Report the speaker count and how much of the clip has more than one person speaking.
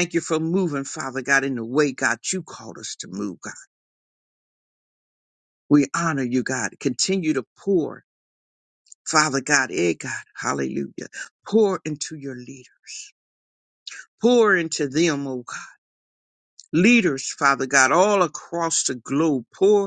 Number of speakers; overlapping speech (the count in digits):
1, no overlap